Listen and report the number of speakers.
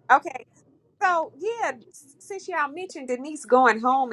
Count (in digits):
1